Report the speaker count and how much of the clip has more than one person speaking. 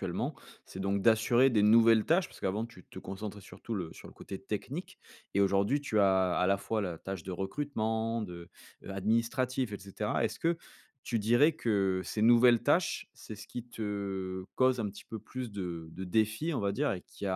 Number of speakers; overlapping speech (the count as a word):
one, no overlap